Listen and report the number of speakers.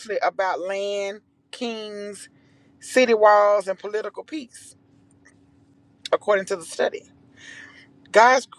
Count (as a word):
one